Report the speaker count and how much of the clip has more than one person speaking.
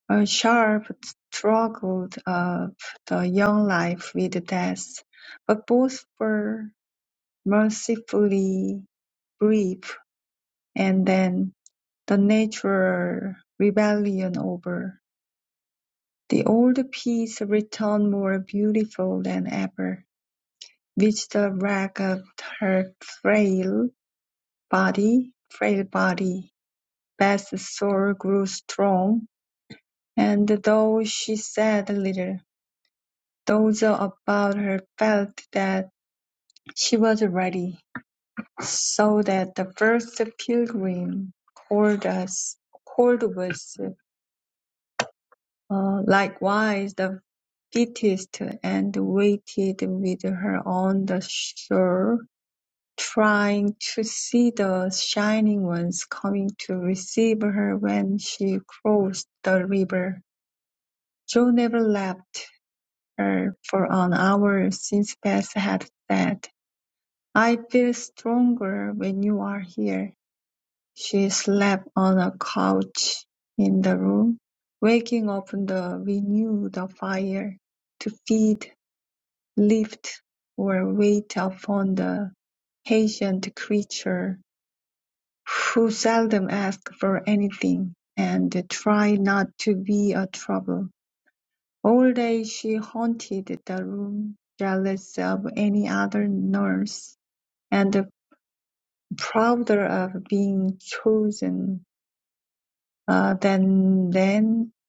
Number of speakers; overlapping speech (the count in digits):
1, no overlap